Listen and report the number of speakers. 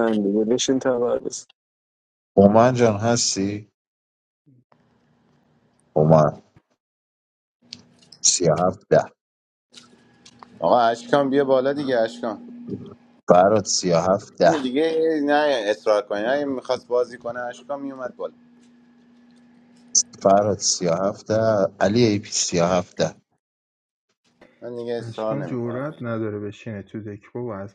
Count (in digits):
4